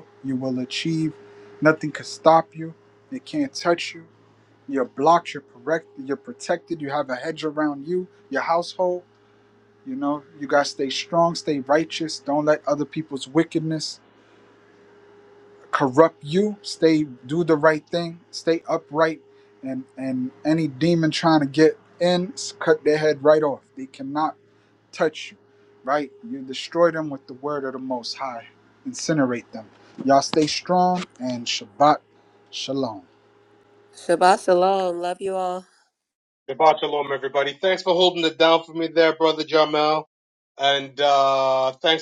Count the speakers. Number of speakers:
three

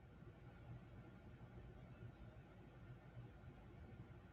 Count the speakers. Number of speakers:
zero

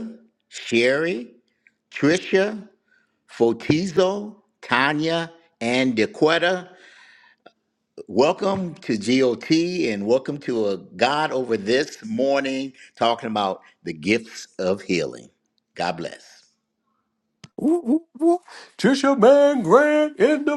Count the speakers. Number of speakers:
two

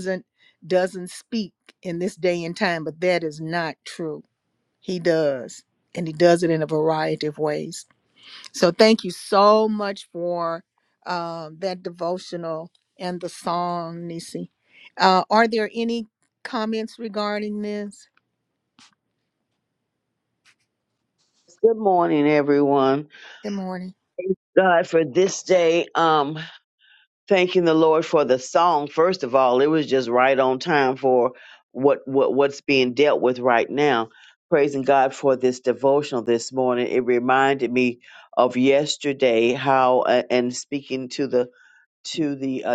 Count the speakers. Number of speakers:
two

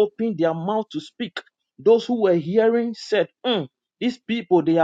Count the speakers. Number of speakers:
one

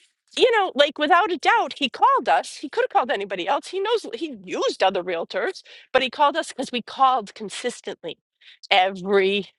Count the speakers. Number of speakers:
one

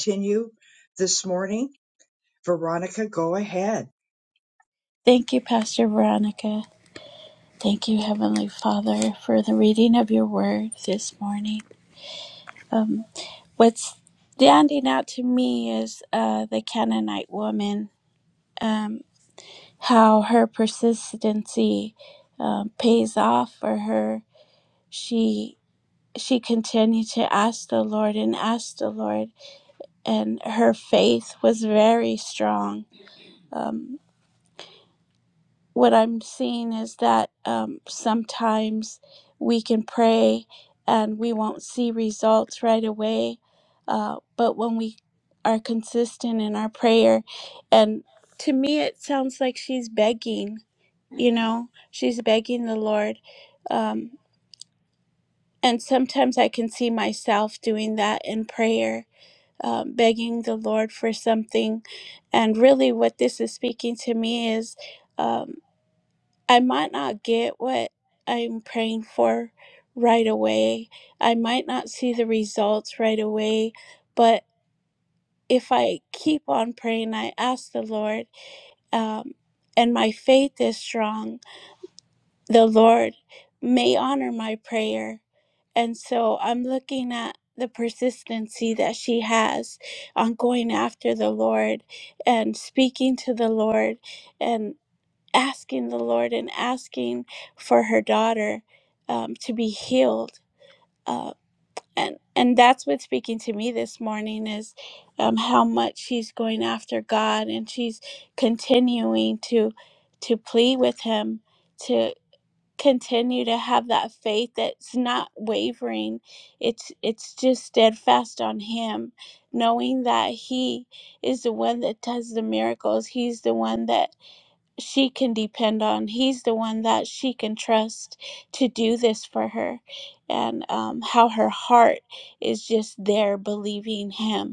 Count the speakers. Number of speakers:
two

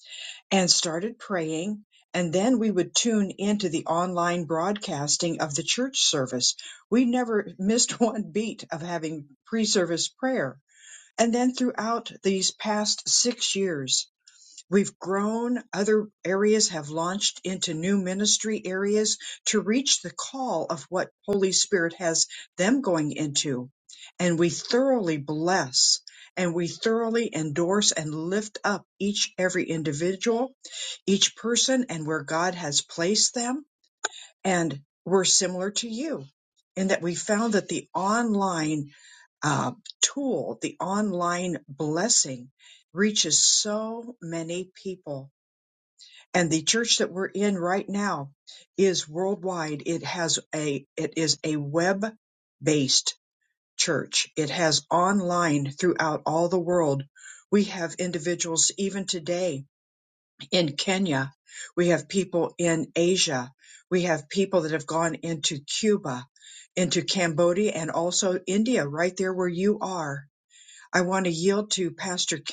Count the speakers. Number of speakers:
one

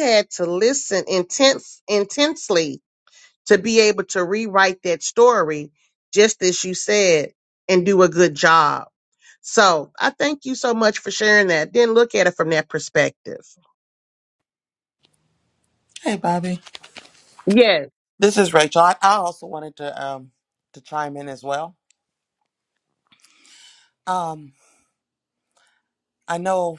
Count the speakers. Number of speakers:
two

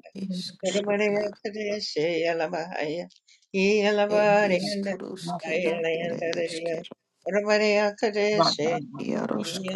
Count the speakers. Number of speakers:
three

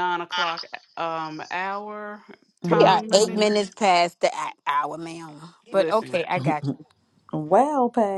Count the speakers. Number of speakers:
three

